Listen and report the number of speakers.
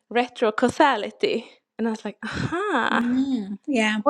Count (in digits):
2